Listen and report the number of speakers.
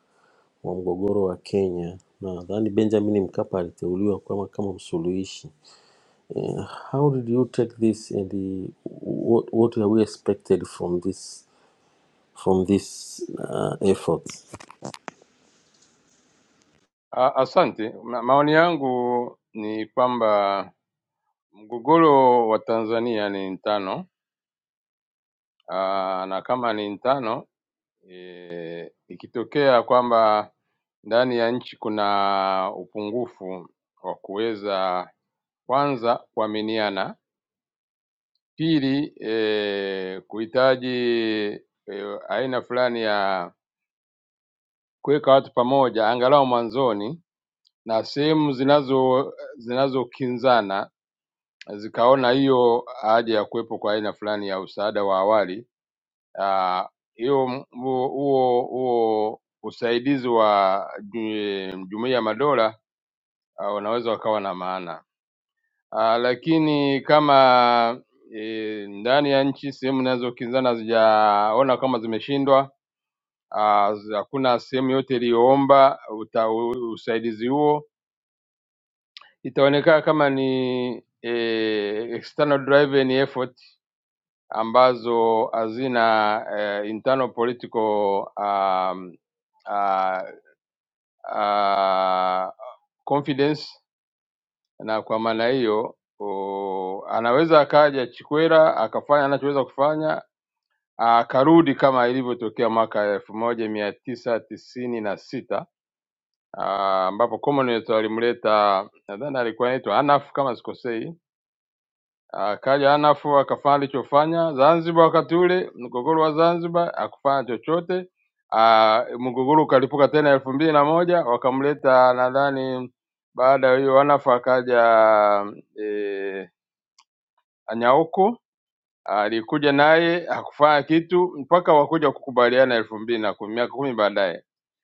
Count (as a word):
two